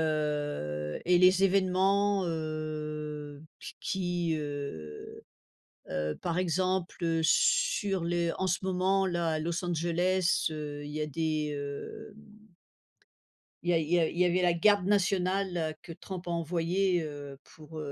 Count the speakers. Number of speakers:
1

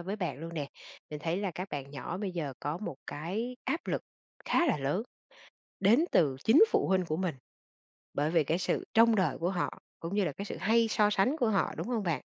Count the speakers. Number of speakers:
1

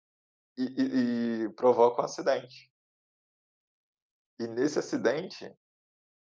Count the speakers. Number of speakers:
1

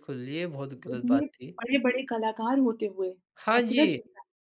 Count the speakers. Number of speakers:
2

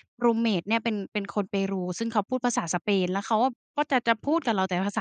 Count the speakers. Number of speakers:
1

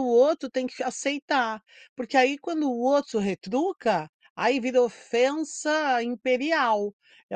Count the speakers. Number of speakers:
1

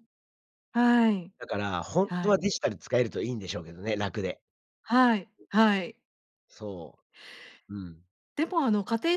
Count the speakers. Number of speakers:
2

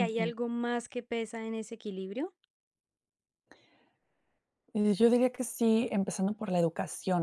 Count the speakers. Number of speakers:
2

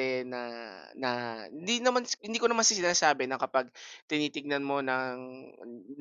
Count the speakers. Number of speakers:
1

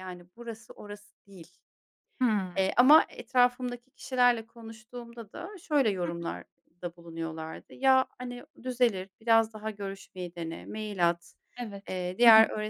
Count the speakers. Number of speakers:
2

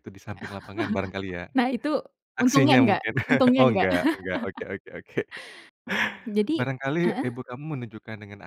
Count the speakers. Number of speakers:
2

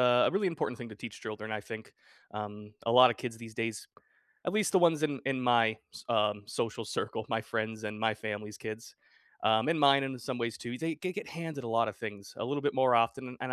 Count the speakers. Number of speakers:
1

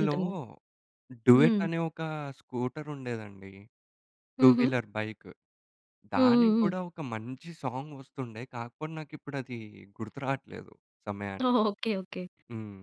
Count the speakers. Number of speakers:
2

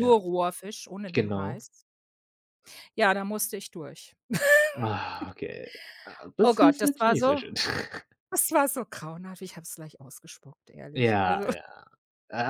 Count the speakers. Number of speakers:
2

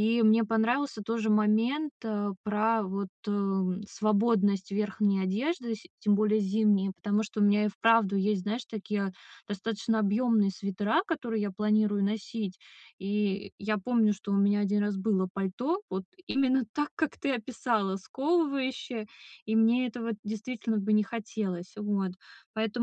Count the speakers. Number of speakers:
1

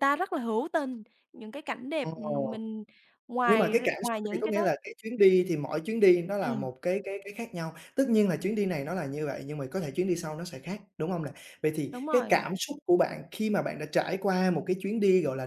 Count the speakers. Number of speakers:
2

